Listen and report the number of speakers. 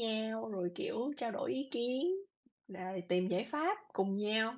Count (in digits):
1